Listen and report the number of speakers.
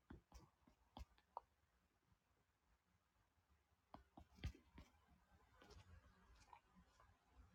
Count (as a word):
zero